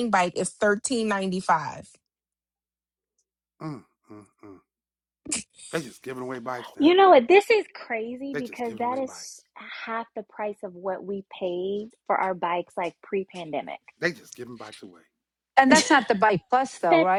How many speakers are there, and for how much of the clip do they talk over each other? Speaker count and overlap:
4, about 7%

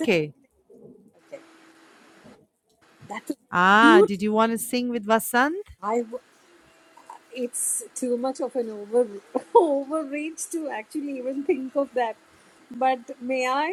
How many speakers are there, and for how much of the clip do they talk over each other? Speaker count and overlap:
2, about 3%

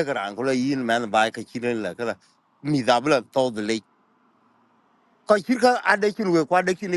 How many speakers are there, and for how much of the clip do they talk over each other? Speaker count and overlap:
1, no overlap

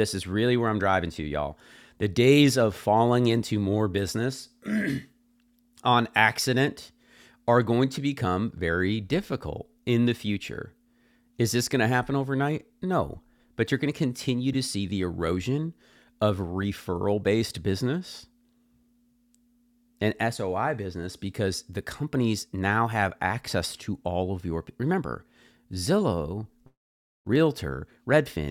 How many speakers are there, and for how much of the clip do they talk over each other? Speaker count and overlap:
1, no overlap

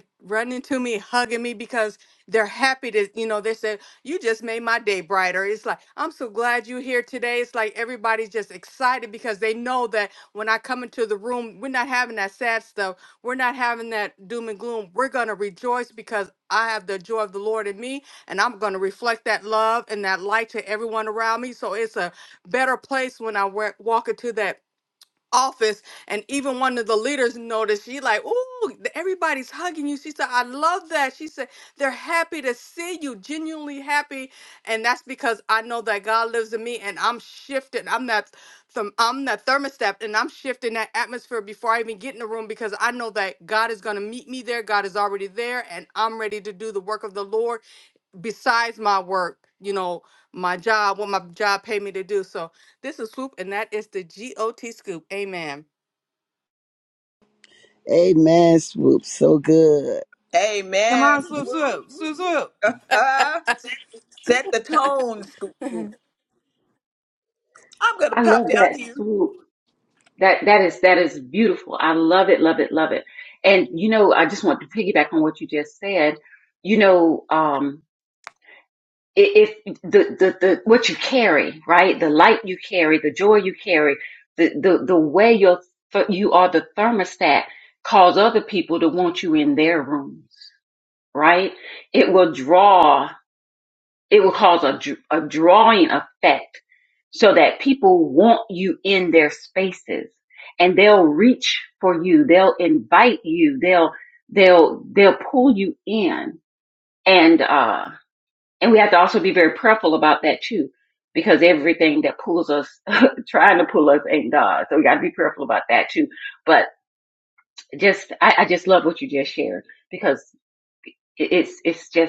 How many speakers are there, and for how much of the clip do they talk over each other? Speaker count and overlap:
5, about 1%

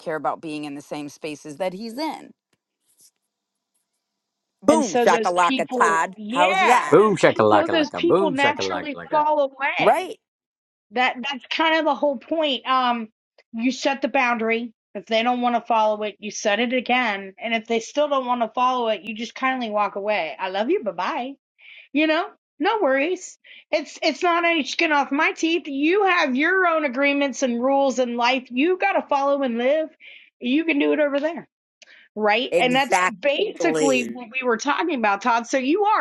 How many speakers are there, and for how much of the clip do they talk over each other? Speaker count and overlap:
3, about 14%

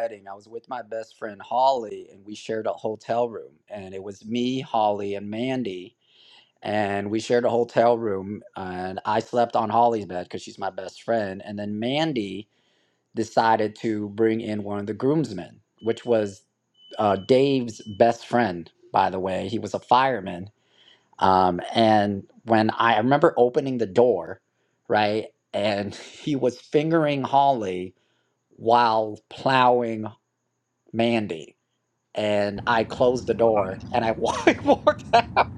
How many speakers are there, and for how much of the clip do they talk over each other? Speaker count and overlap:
1, no overlap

